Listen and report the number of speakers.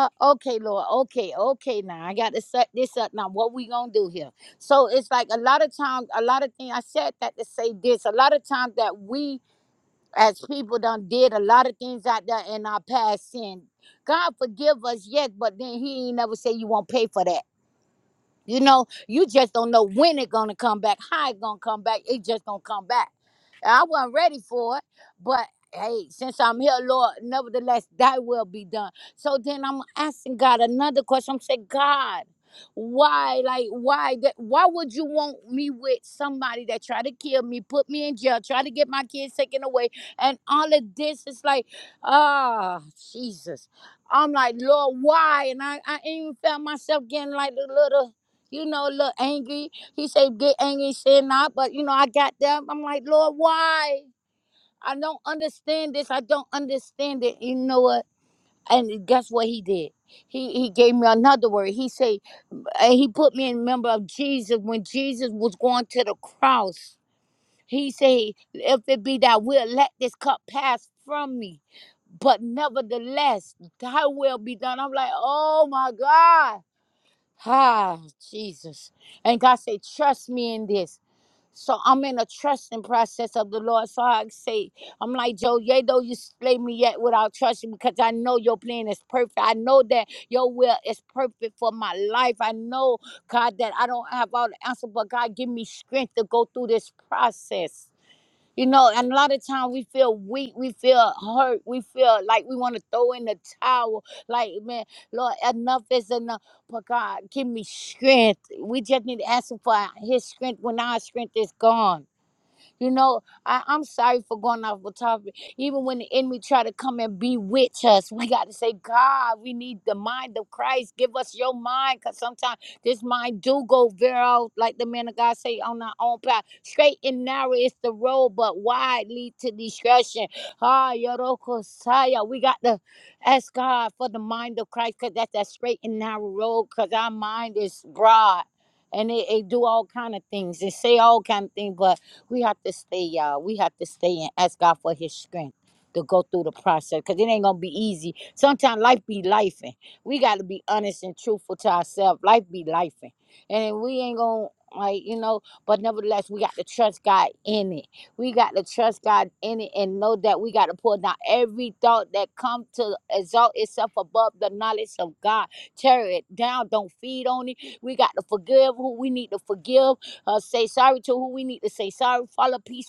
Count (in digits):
1